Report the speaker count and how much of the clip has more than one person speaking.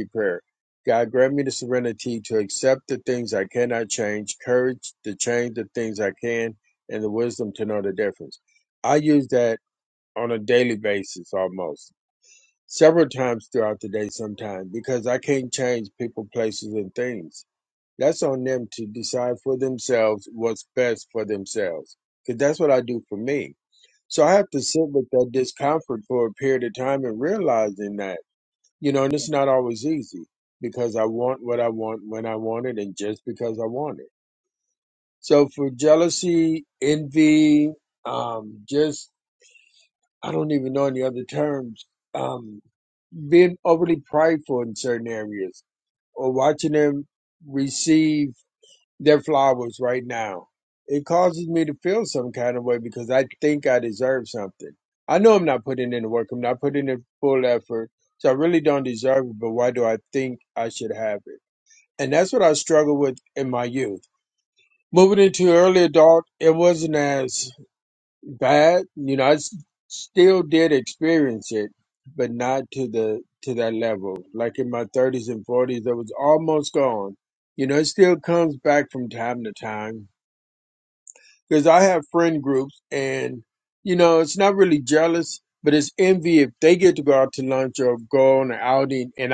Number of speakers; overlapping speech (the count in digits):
1, no overlap